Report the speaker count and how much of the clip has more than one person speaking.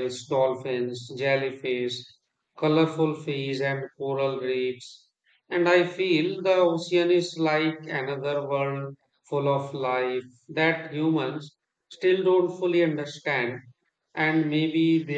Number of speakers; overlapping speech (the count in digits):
1, no overlap